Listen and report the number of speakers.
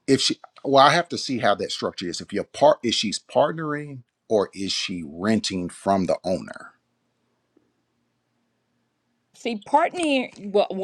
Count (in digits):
2